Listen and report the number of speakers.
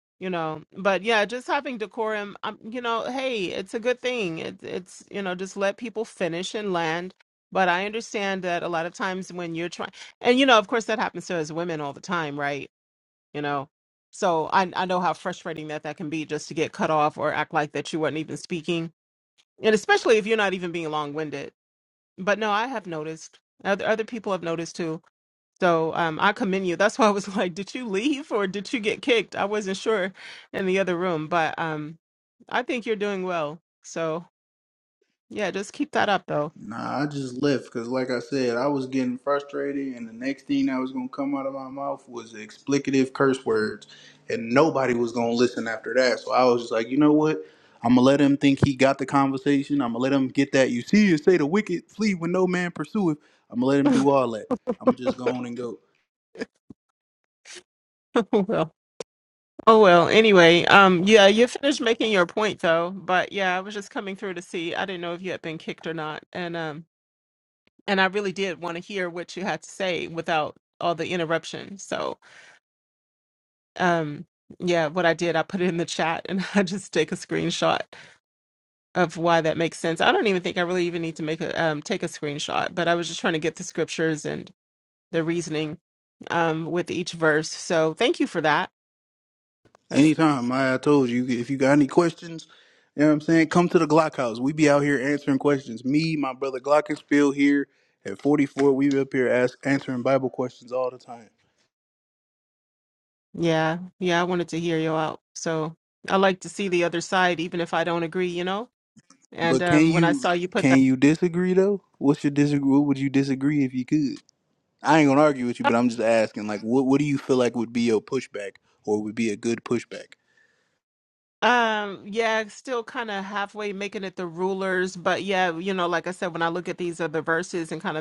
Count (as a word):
two